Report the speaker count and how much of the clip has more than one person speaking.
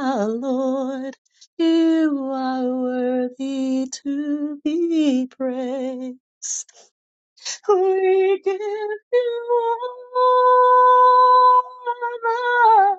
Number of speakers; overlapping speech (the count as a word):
one, no overlap